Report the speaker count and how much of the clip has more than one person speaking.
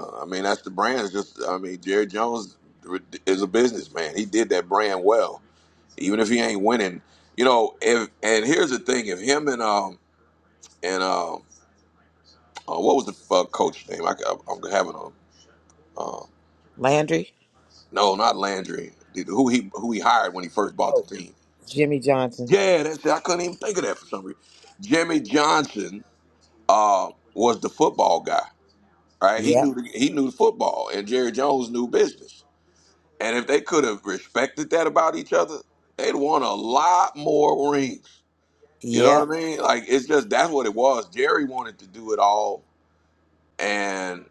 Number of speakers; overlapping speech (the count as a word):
two, about 2%